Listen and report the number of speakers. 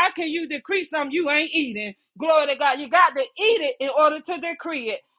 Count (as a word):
one